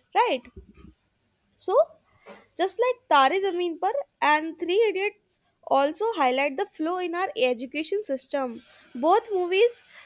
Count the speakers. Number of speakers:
one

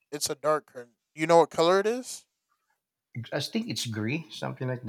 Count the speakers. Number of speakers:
two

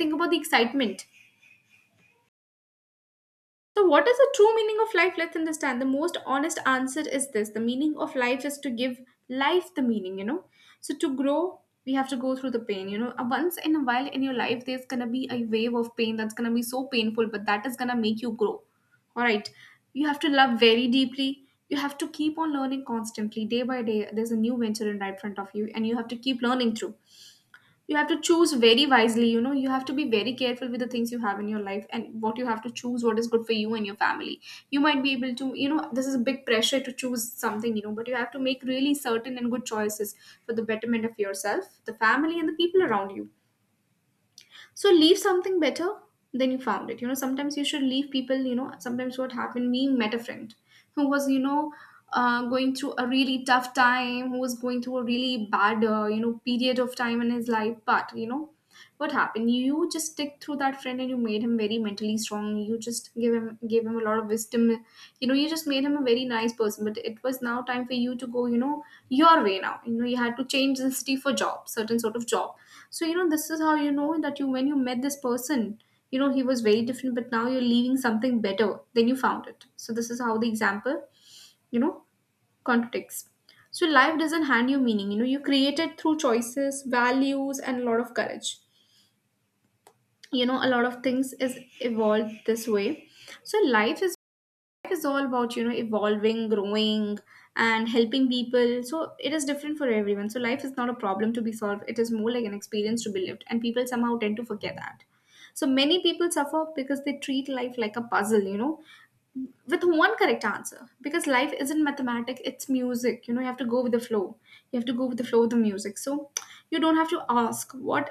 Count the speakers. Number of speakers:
one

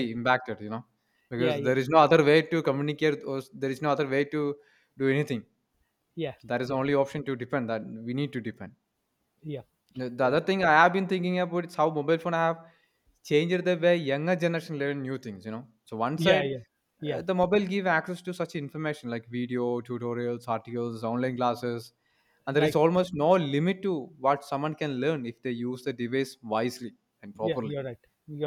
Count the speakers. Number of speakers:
two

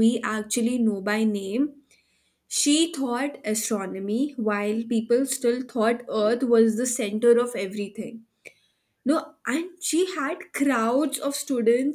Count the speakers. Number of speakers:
one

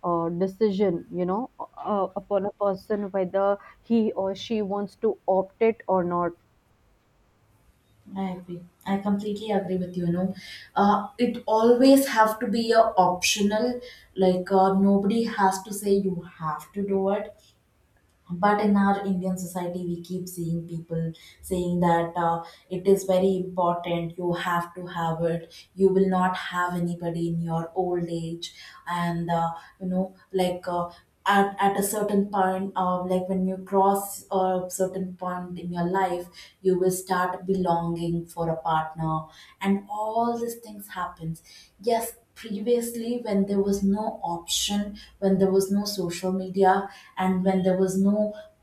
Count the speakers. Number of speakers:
two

